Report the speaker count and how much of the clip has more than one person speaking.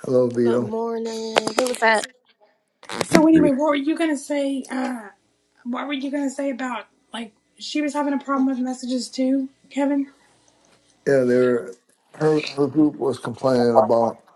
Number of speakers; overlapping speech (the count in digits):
3, about 2%